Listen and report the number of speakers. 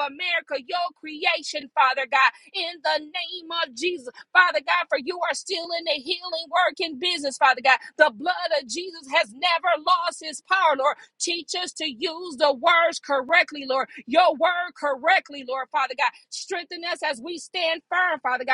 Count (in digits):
1